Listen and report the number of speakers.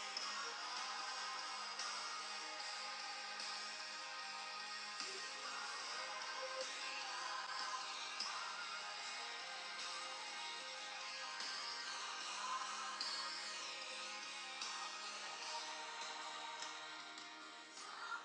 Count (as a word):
zero